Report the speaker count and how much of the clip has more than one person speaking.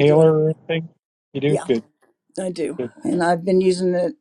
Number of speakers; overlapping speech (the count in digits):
2, about 15%